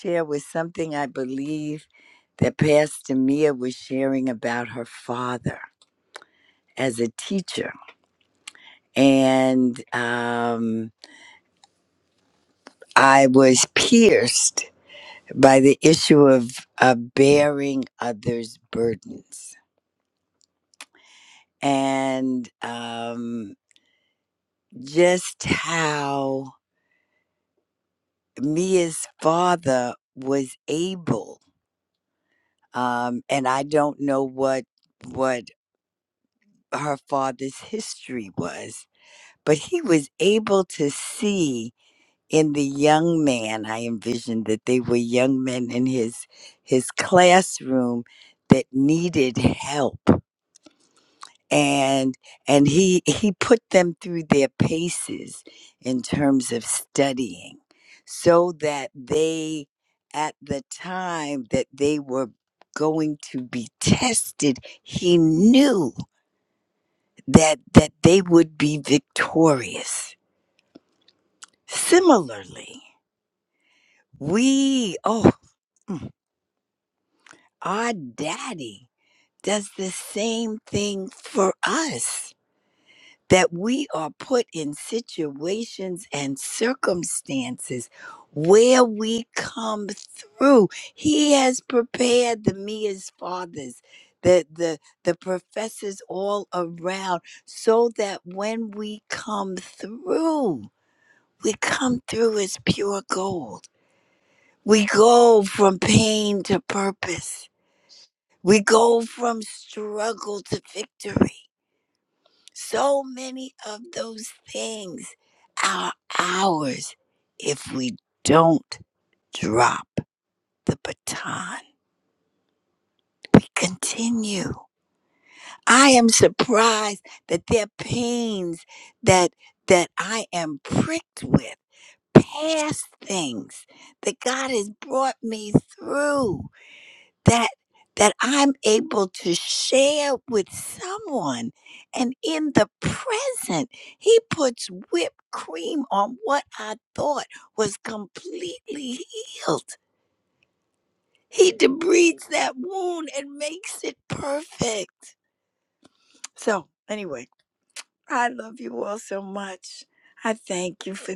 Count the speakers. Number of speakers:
1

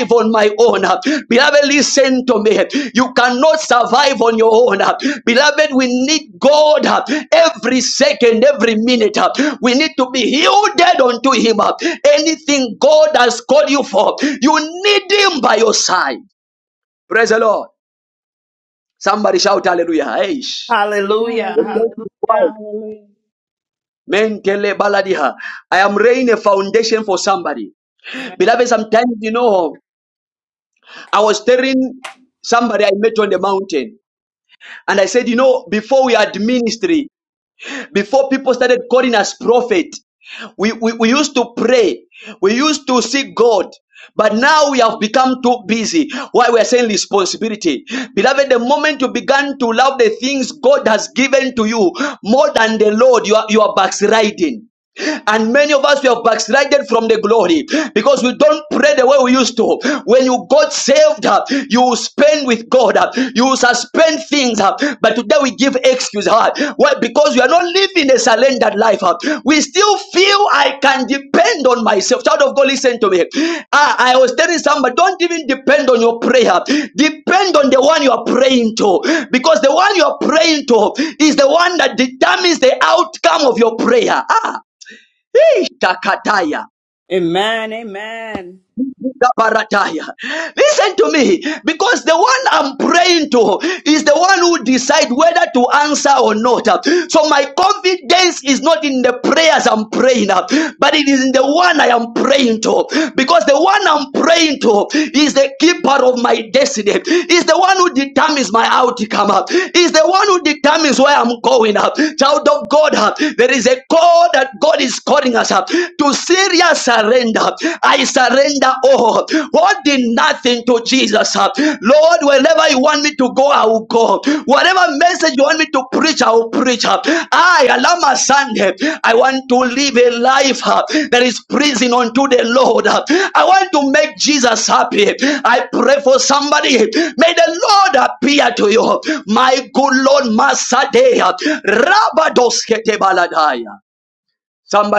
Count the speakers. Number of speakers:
3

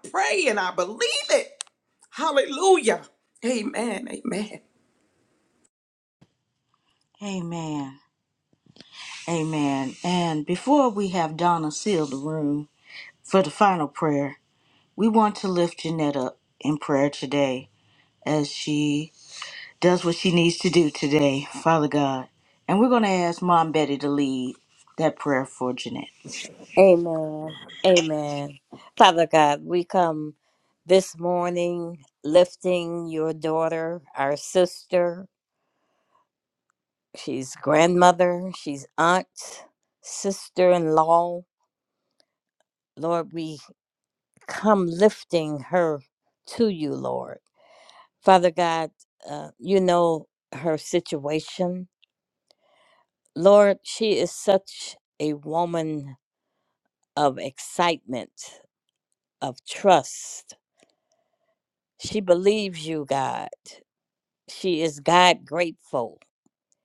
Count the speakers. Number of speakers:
3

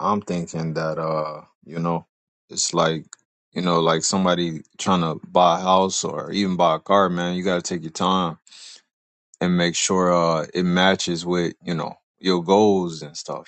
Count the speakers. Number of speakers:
1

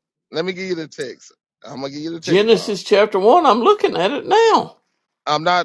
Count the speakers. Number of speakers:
2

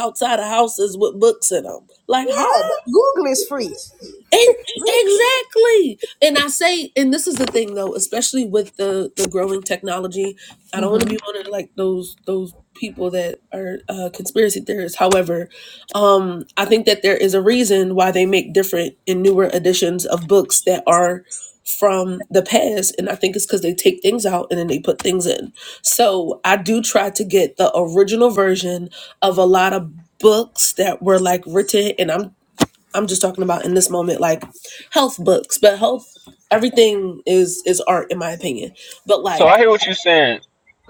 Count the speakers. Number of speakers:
3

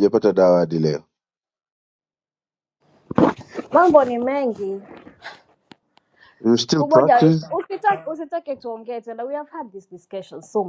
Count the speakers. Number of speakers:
2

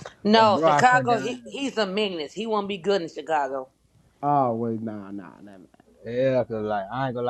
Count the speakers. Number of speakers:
3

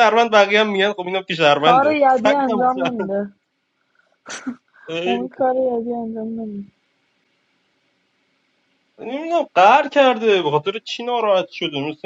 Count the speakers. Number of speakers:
2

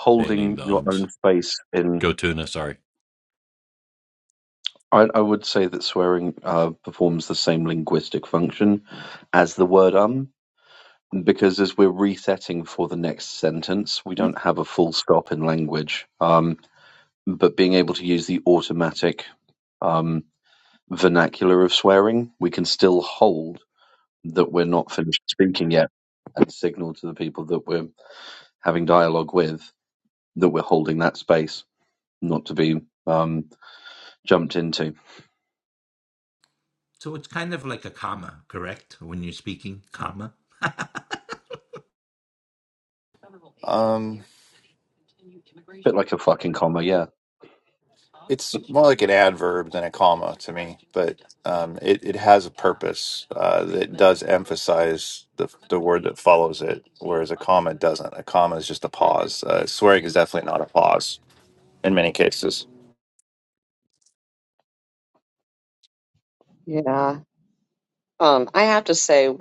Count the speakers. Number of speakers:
5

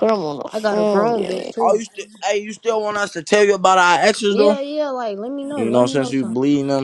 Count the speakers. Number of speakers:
3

